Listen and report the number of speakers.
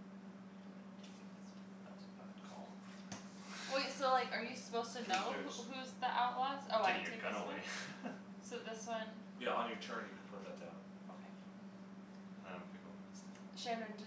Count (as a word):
three